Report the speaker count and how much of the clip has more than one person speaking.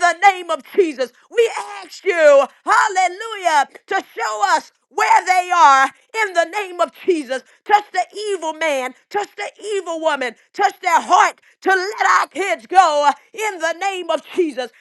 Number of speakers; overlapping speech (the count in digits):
1, no overlap